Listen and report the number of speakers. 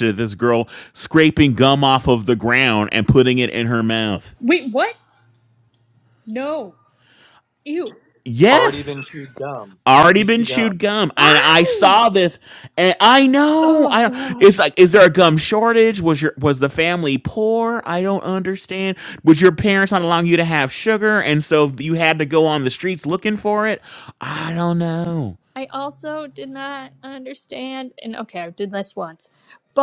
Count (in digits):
3